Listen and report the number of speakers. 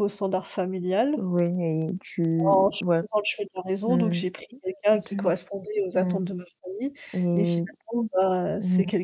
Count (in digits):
2